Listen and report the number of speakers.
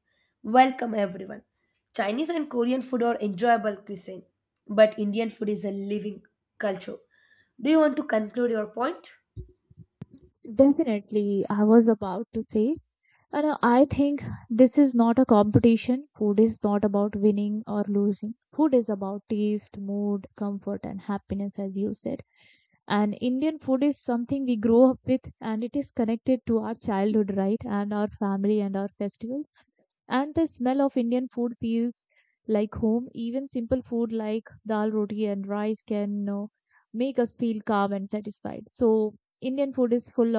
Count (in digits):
2